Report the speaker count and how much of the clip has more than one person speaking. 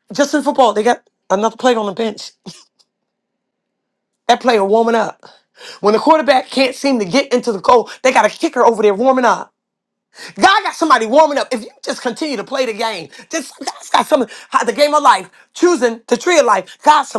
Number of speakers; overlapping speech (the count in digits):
1, no overlap